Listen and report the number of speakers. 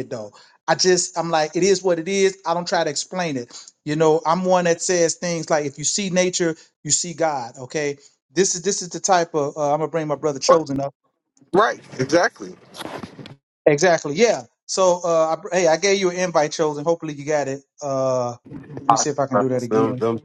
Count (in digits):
2